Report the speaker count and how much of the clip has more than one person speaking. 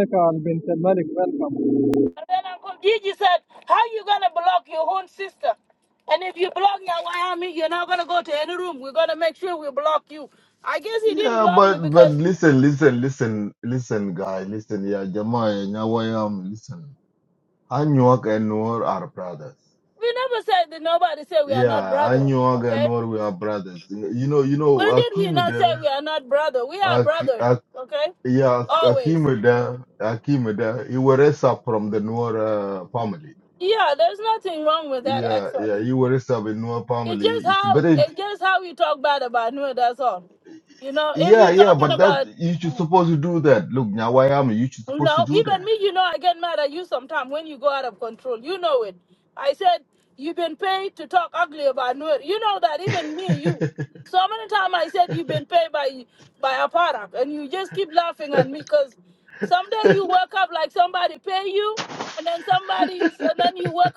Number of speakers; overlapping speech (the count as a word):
three, about 12%